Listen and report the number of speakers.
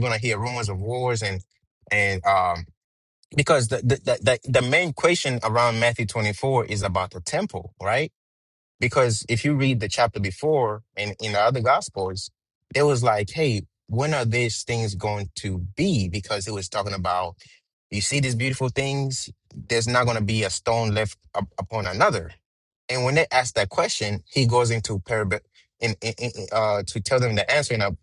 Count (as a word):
one